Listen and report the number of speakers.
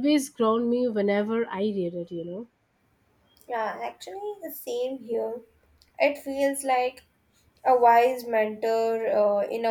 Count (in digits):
2